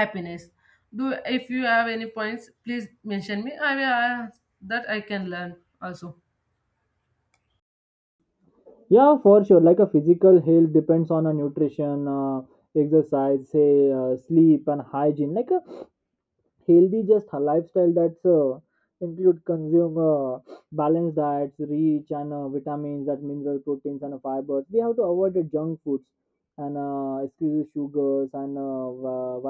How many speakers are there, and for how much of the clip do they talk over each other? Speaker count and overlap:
two, no overlap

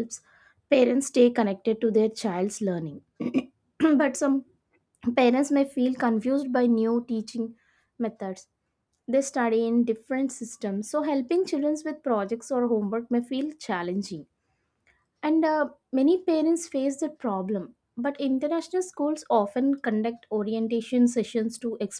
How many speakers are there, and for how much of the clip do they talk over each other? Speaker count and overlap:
one, no overlap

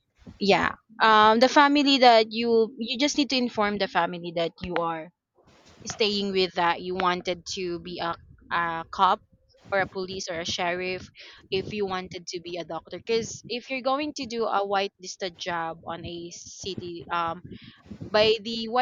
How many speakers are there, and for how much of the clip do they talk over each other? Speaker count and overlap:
one, no overlap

